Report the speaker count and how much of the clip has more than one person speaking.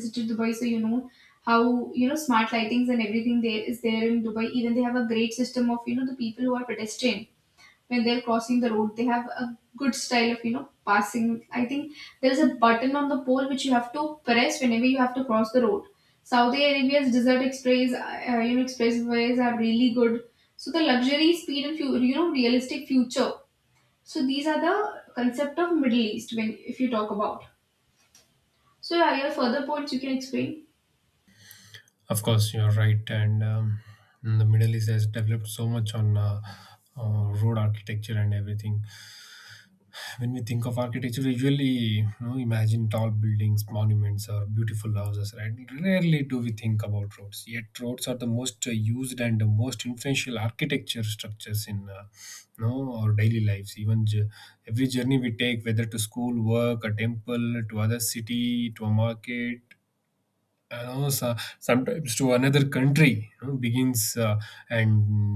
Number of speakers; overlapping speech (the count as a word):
two, no overlap